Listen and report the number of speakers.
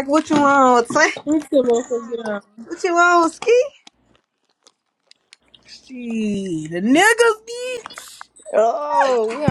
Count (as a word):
three